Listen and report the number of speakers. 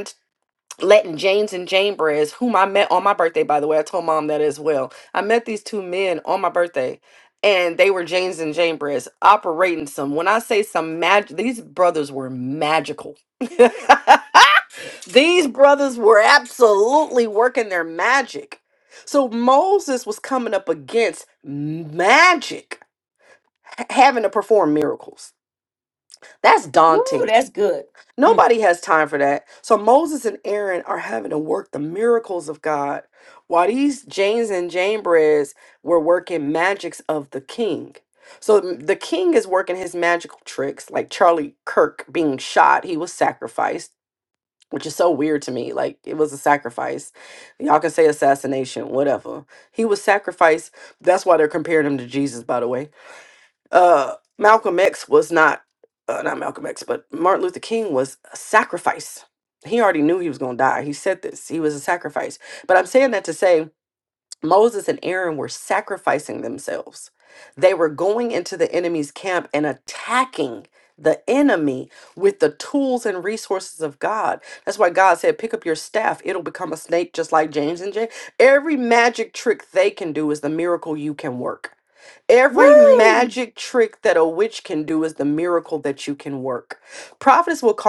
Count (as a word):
two